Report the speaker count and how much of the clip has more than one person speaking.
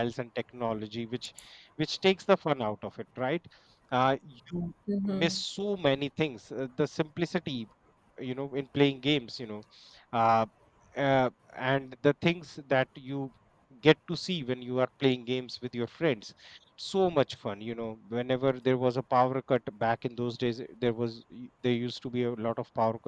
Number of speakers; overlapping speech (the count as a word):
one, no overlap